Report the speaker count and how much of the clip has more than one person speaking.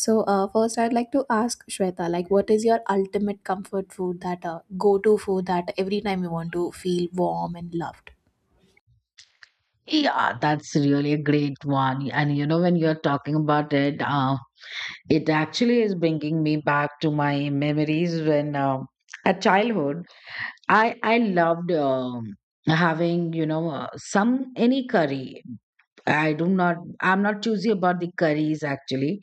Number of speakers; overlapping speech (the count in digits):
2, no overlap